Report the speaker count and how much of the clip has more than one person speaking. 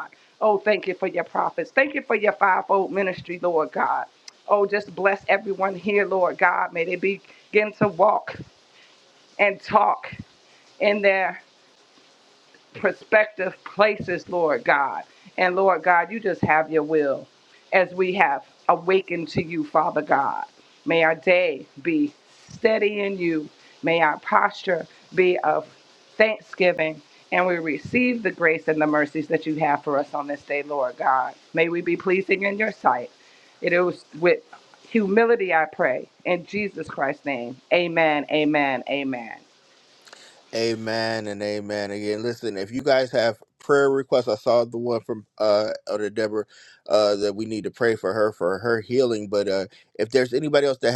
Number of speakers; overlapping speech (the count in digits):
2, no overlap